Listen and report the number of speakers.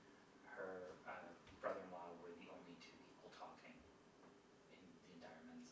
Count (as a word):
one